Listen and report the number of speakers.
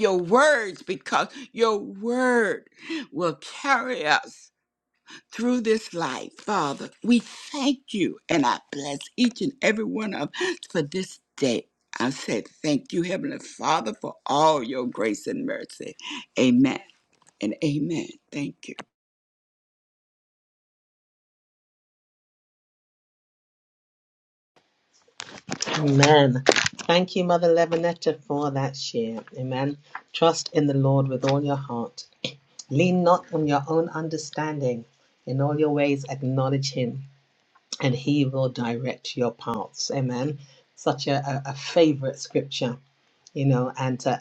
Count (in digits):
2